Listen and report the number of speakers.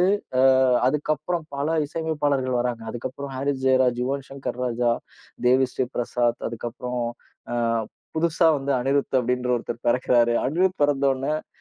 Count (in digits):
1